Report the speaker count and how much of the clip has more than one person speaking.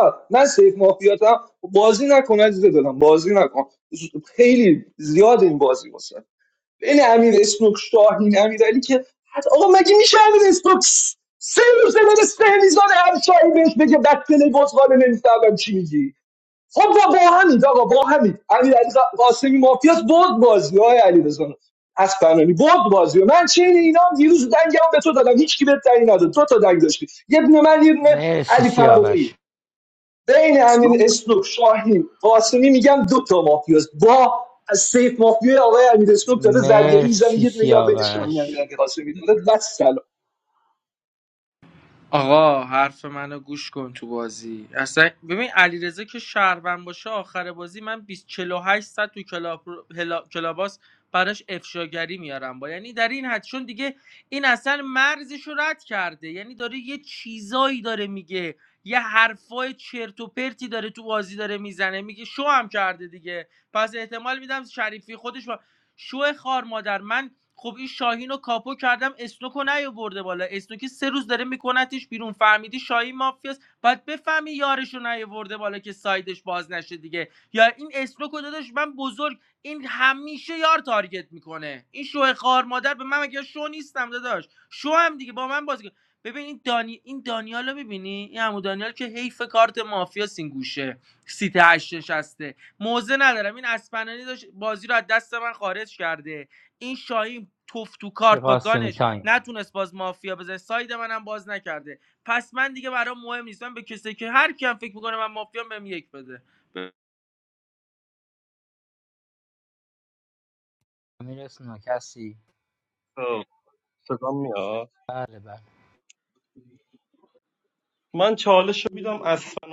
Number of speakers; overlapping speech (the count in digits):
4, about 4%